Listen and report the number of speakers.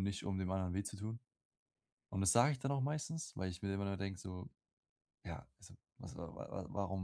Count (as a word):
one